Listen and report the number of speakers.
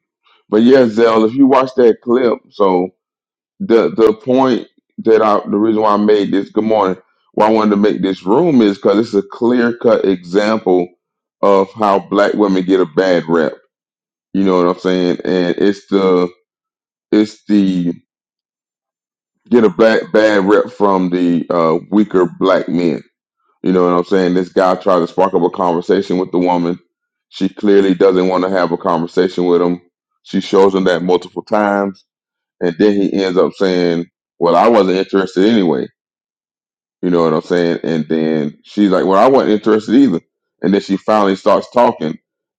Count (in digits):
1